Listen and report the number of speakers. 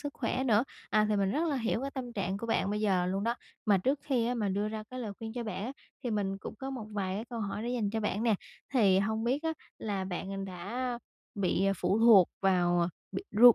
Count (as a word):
one